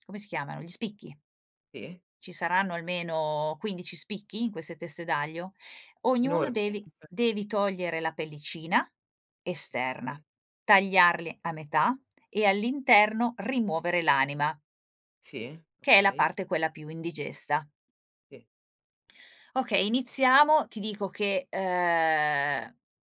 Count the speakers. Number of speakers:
2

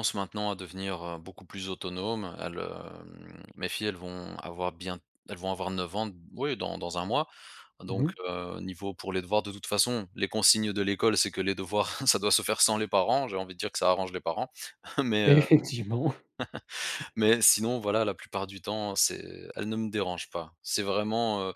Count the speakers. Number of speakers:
2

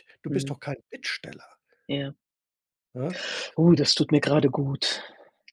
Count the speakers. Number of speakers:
2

